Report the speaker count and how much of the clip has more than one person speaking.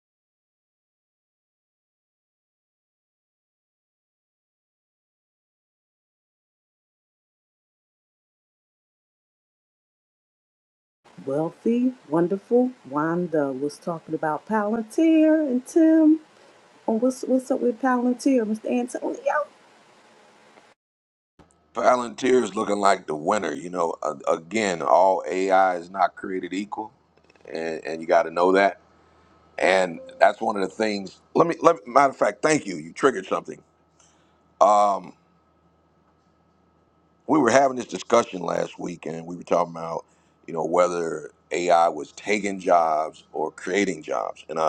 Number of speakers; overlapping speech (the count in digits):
2, no overlap